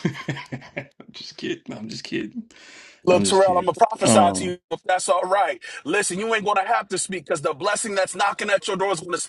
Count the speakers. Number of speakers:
2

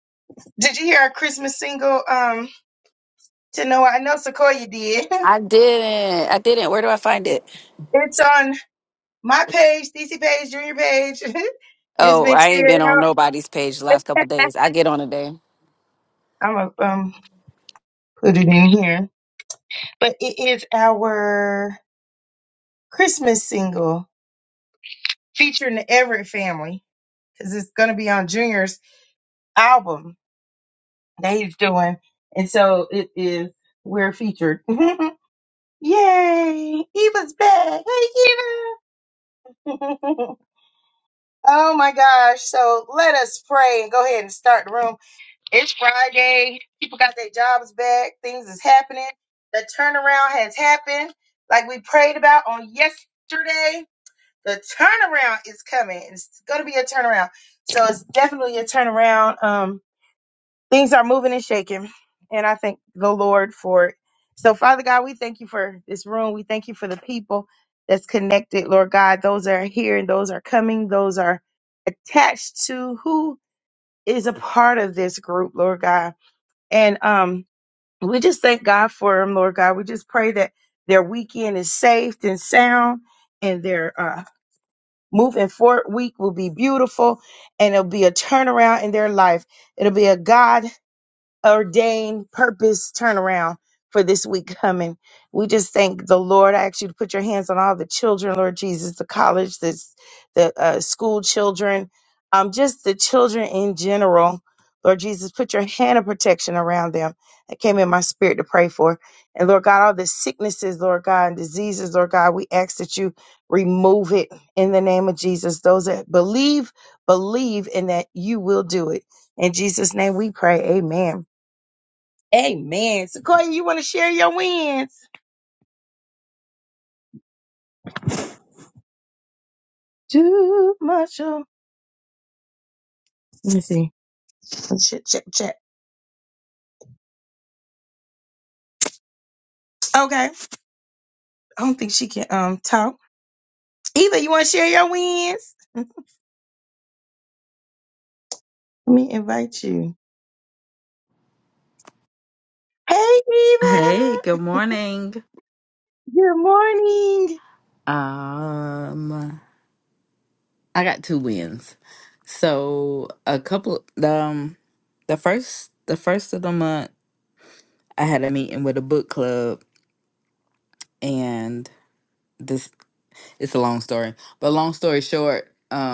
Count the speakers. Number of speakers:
3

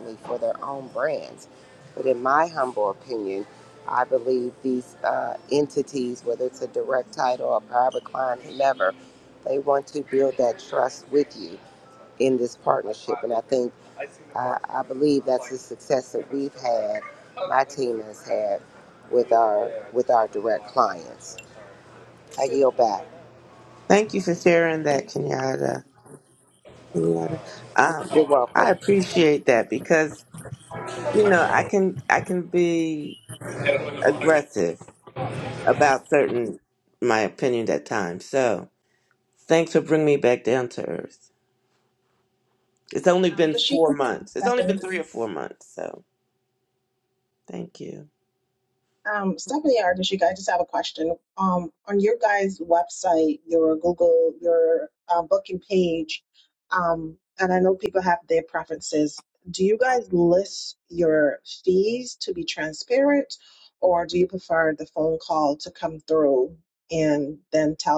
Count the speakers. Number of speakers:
3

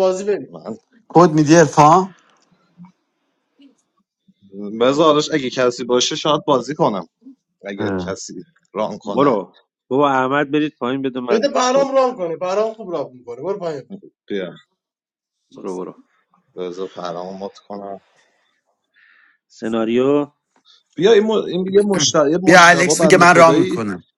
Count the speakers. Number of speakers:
4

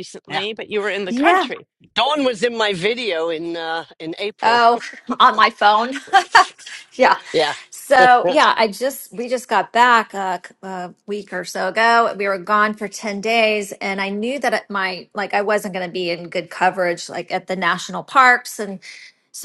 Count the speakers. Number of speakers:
3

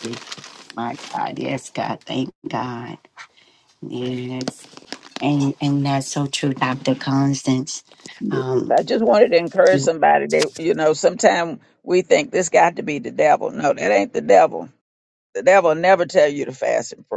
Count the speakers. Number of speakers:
2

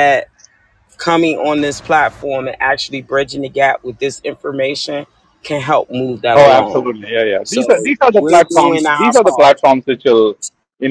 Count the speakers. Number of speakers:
2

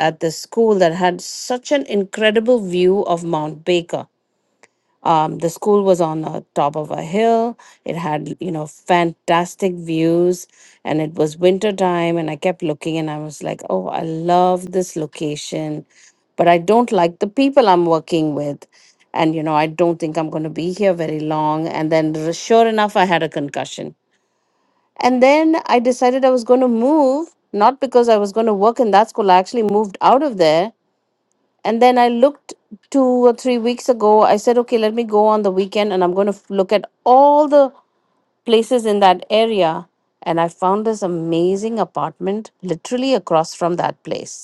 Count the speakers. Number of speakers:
1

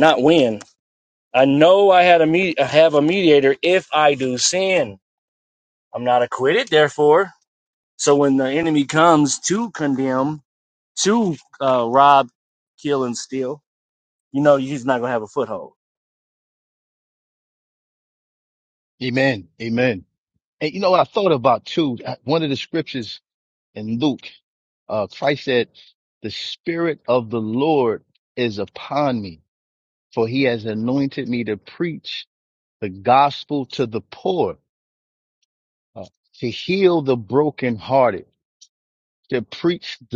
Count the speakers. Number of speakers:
2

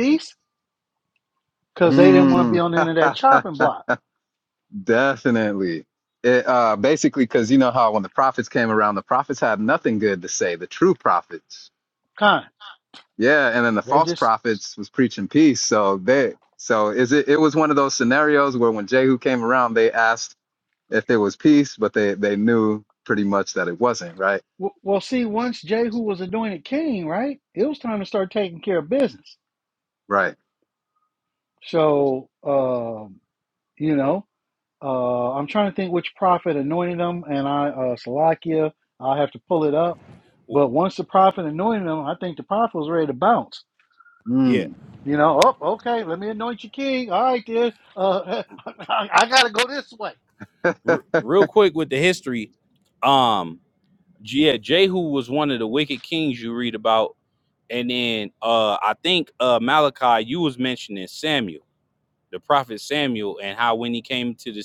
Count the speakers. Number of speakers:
3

